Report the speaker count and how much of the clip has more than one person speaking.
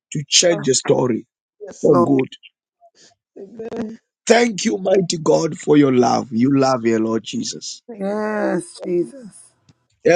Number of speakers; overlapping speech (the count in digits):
3, about 7%